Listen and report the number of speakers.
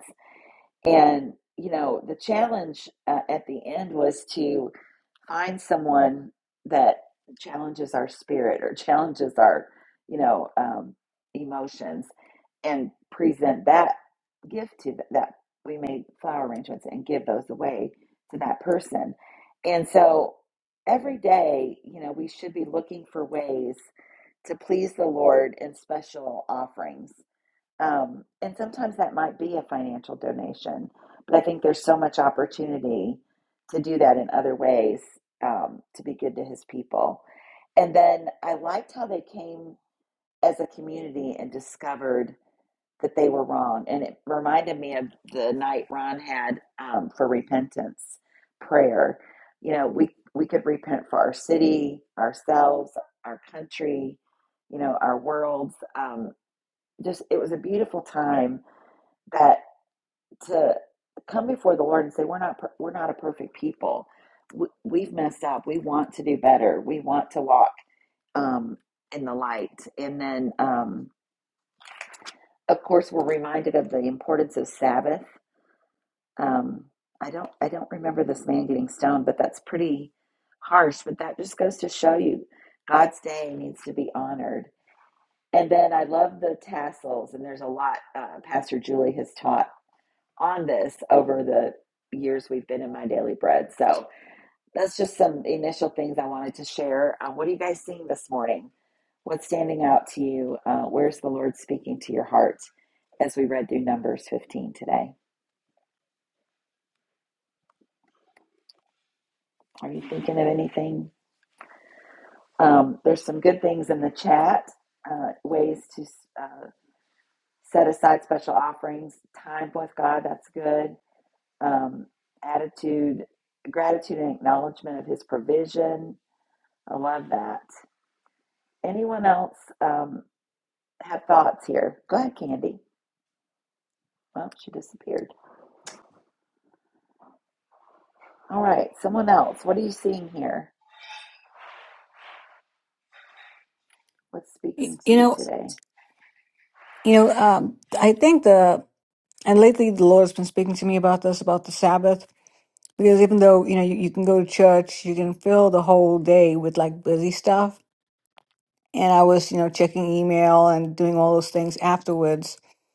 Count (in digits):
2